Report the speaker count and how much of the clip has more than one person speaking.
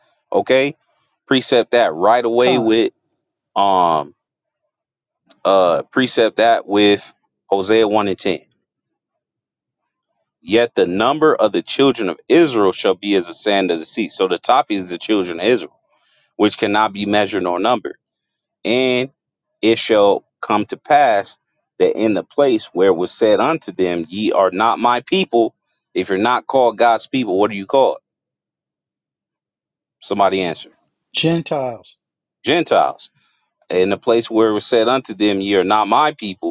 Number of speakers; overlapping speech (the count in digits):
2, about 1%